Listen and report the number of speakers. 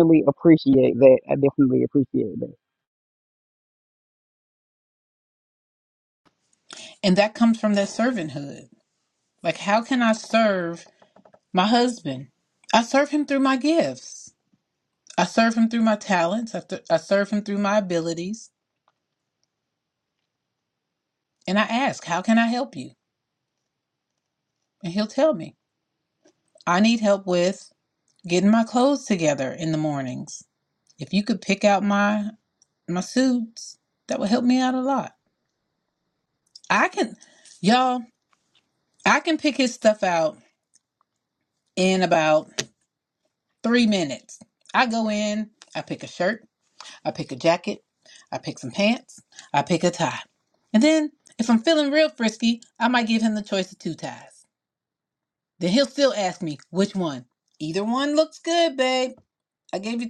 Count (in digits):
2